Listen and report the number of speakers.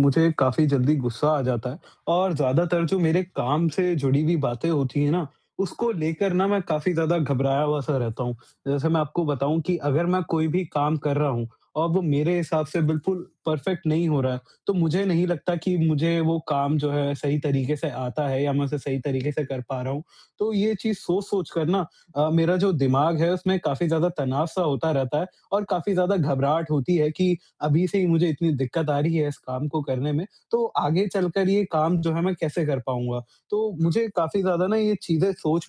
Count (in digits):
1